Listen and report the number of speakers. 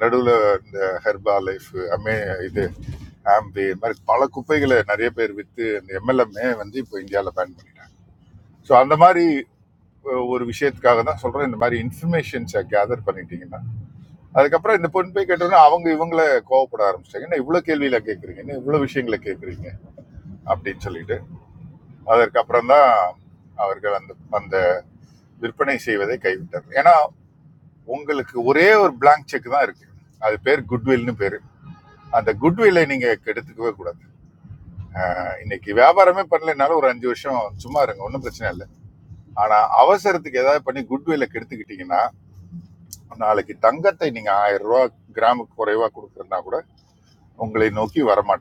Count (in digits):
1